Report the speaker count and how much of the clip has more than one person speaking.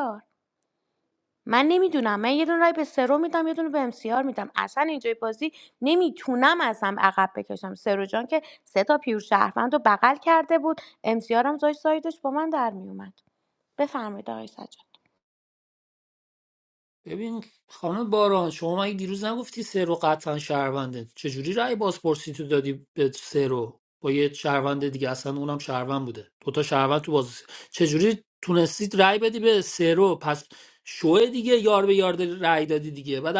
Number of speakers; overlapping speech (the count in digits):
2, no overlap